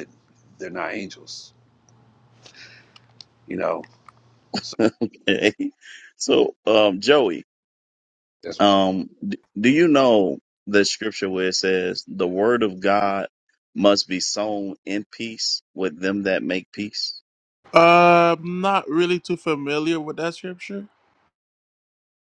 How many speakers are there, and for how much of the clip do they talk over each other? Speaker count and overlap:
3, under 1%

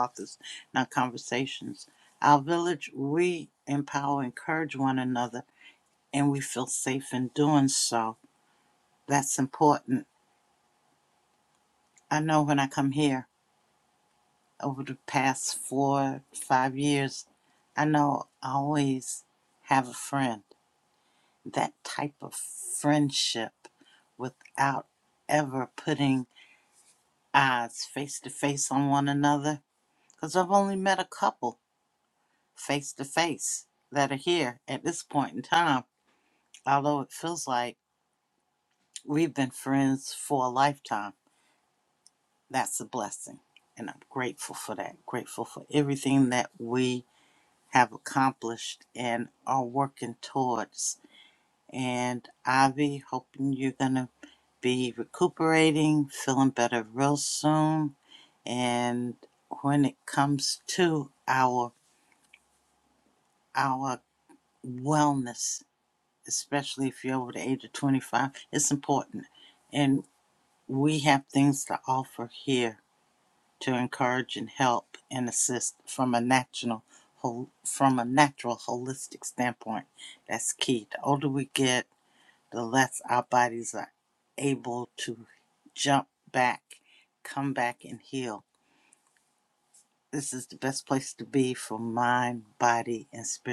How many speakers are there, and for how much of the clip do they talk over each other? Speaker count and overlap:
1, no overlap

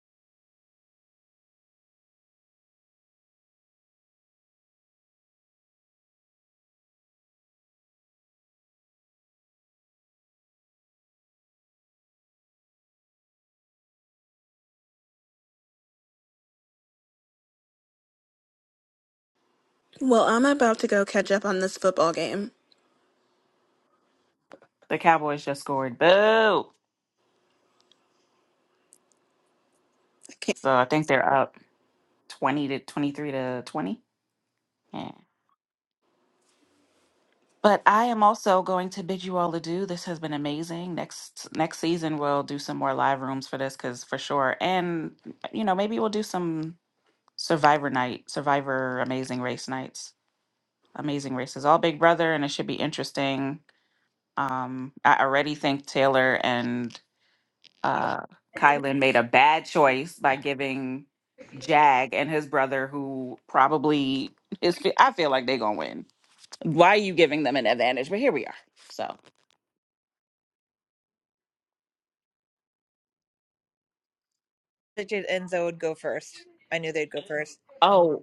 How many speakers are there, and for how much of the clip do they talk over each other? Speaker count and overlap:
3, no overlap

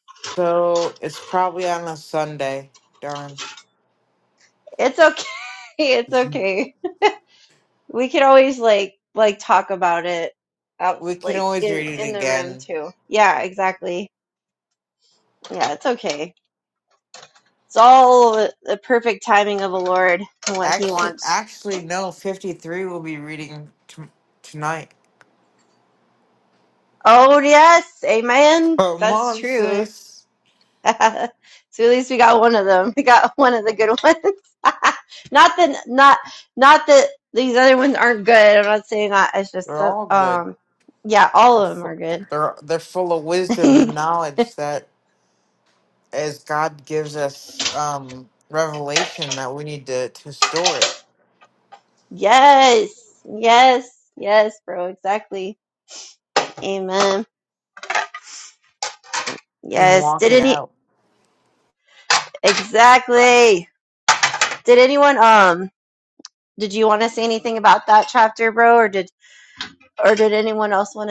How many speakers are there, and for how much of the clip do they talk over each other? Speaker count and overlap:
2, about 8%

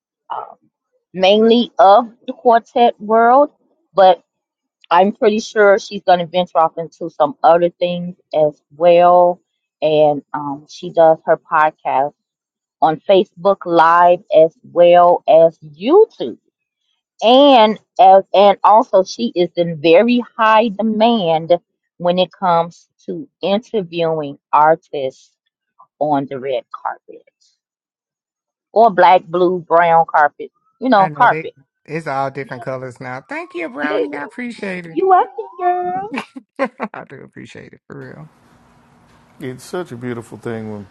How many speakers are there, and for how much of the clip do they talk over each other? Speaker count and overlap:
3, about 2%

